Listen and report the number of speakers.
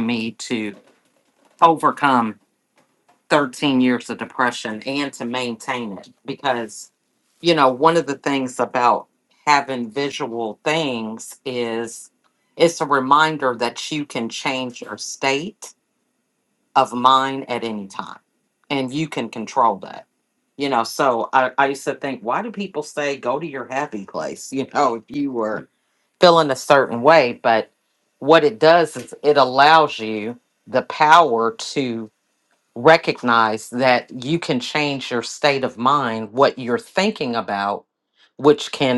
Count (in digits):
1